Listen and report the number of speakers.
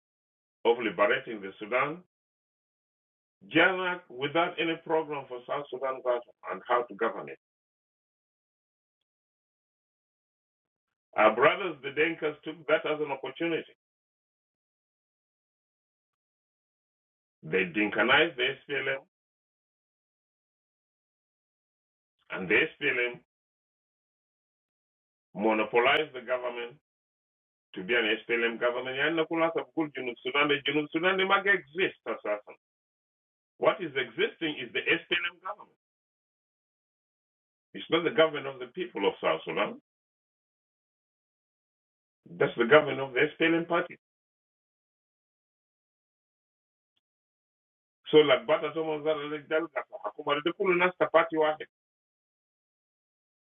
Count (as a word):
one